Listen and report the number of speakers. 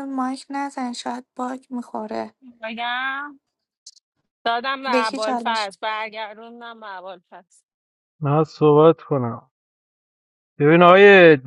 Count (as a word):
three